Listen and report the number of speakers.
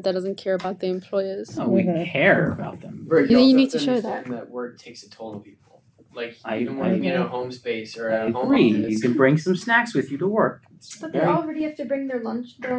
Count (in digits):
4